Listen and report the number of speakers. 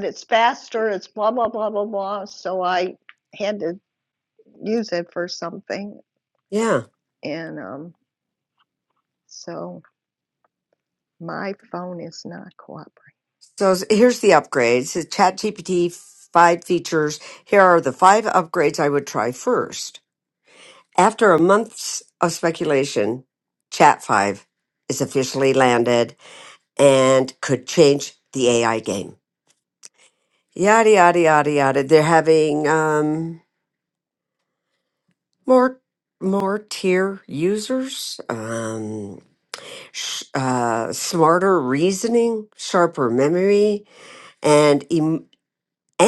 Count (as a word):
two